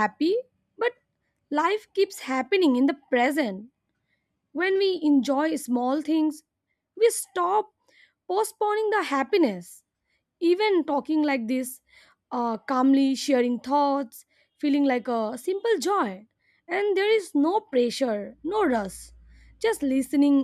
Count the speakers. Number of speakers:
1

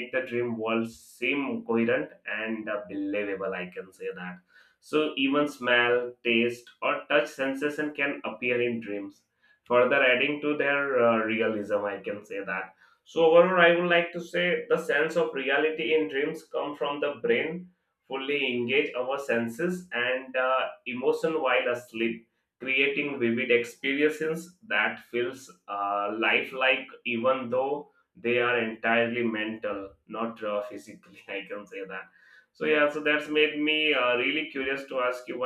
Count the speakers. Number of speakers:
1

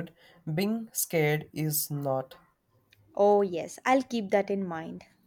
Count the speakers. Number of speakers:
2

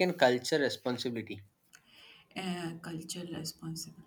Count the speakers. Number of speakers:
2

